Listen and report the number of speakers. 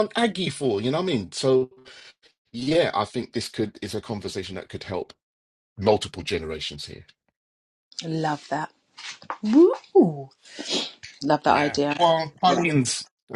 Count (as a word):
two